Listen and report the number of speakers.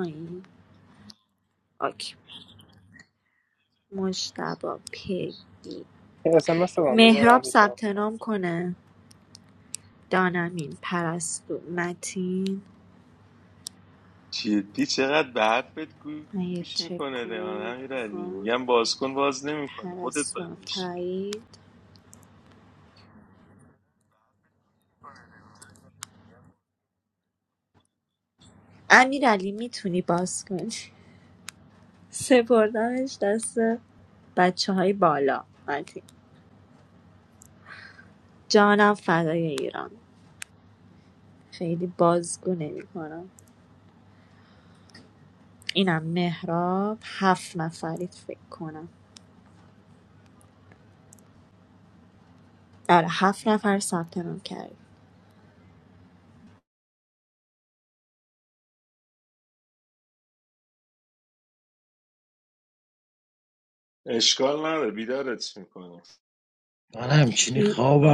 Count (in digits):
4